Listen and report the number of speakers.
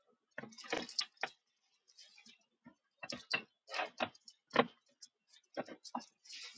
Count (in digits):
0